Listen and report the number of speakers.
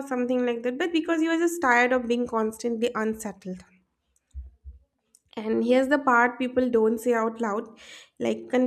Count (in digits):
1